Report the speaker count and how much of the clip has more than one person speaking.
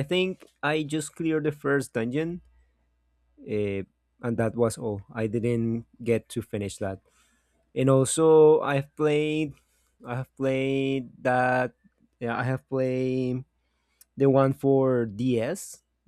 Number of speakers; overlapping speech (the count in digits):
1, no overlap